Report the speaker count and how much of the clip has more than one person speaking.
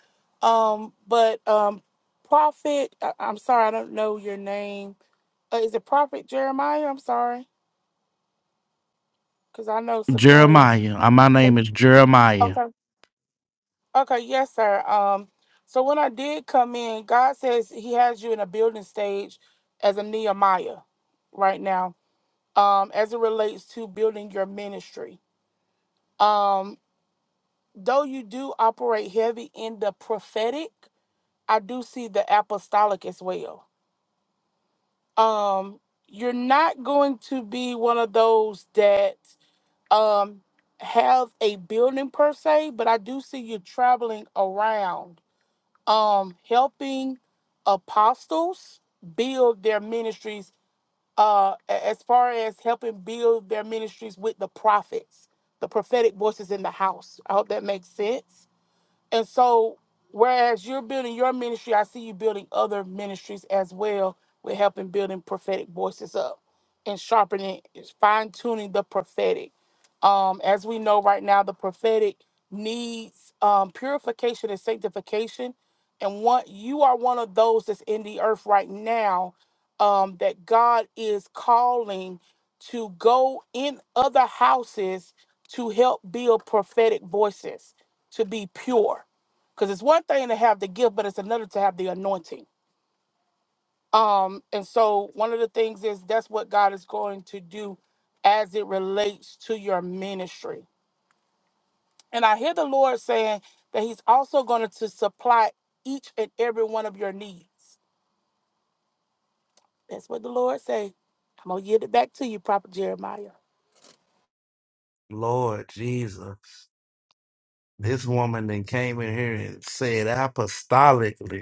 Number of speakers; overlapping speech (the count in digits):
2, about 1%